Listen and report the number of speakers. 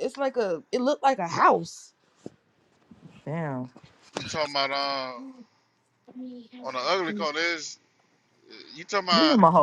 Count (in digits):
3